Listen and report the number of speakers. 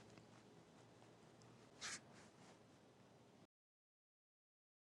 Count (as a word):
zero